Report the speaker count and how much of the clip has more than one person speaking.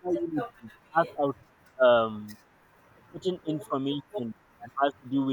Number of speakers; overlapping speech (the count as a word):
one, no overlap